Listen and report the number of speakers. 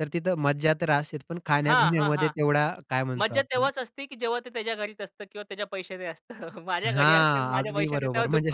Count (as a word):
two